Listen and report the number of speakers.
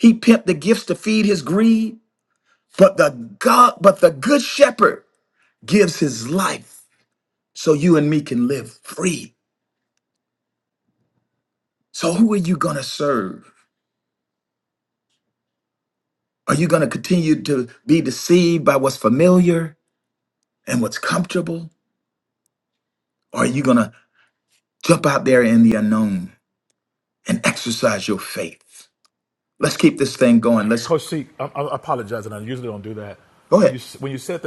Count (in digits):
2